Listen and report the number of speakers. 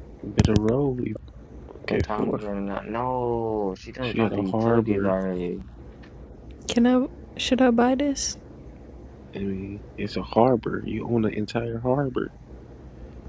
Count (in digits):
3